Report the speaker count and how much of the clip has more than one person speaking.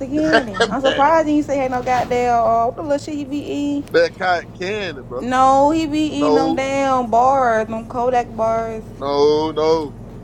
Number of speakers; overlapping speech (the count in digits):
2, about 10%